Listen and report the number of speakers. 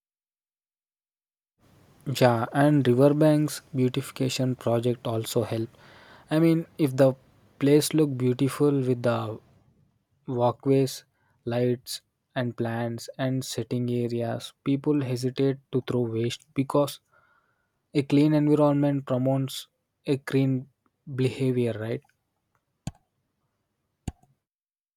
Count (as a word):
one